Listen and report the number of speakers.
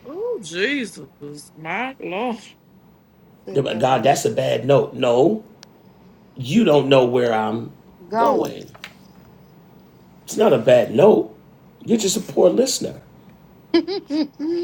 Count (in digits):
3